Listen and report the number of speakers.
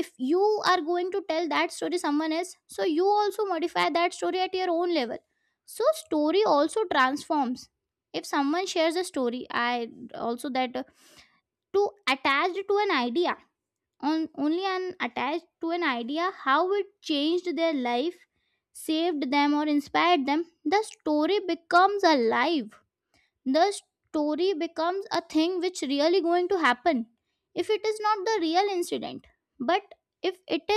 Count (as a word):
one